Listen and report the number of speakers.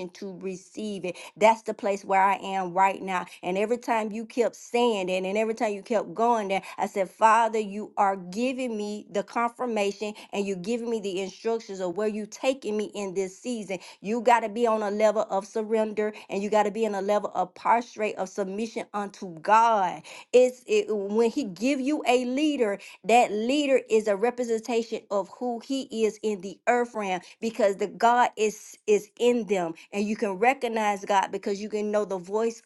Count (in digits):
1